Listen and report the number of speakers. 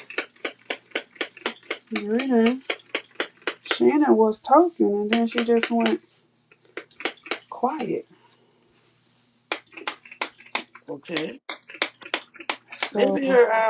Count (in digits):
2